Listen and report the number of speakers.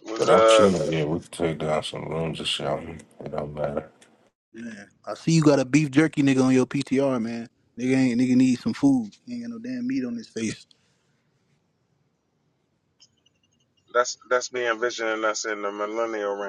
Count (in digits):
3